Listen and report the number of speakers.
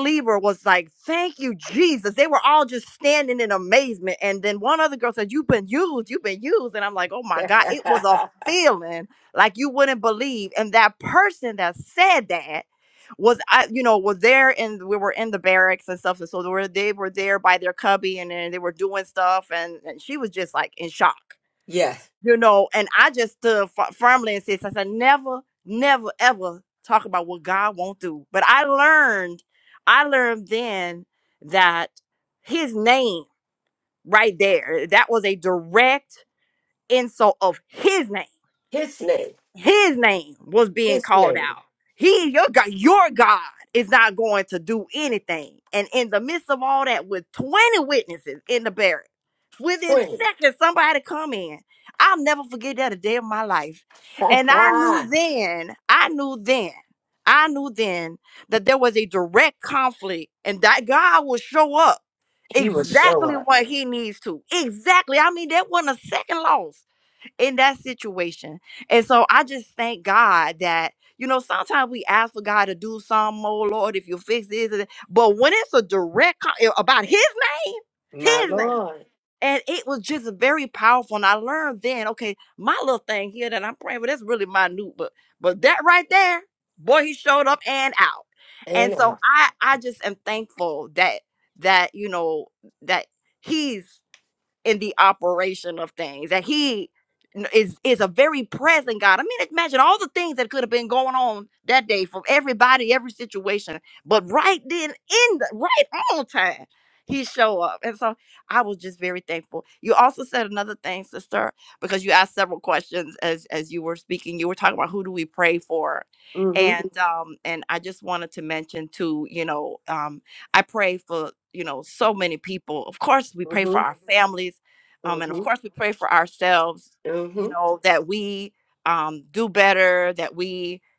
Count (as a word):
two